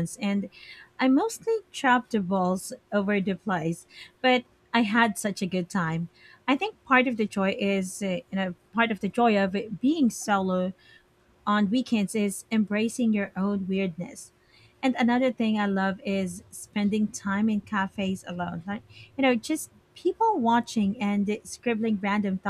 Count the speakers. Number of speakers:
one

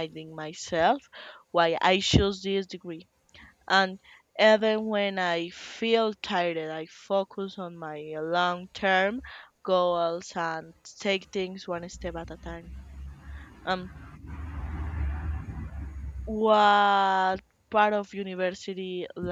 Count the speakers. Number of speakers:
one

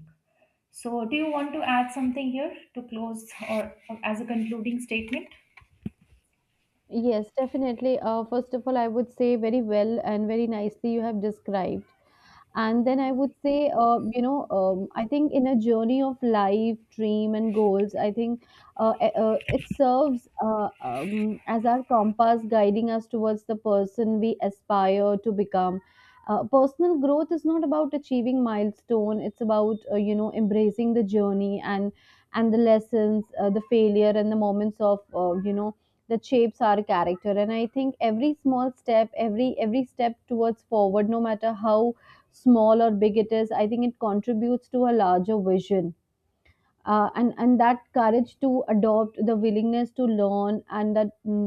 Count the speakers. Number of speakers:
two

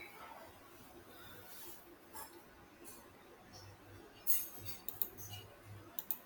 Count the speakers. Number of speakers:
zero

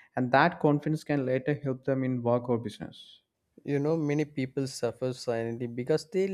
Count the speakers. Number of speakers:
two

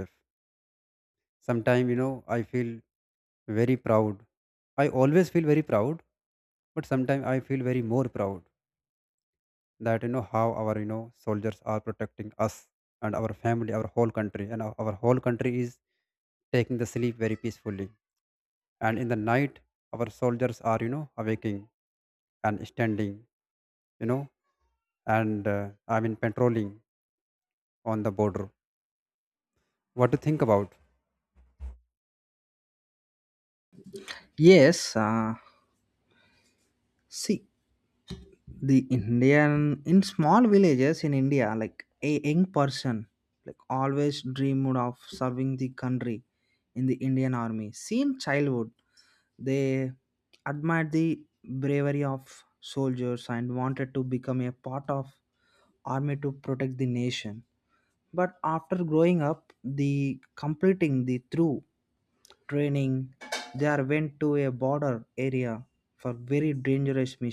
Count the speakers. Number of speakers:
two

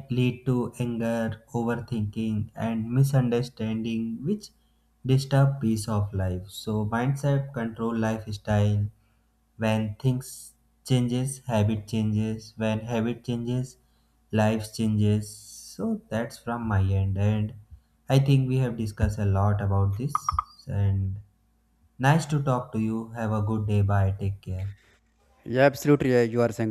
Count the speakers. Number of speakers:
two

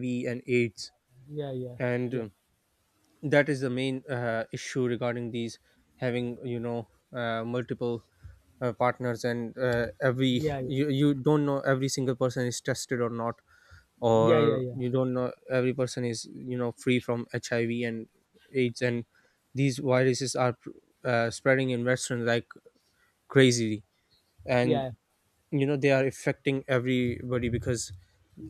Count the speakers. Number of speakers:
two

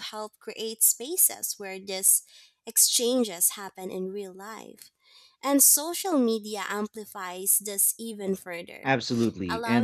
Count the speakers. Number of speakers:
two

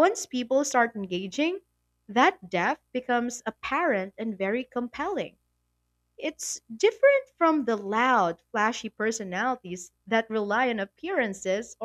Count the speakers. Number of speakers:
one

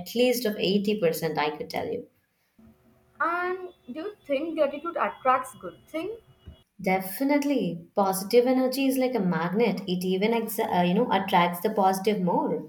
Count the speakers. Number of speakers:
two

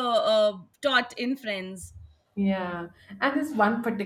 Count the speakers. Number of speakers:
two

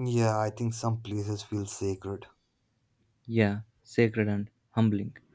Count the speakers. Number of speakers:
two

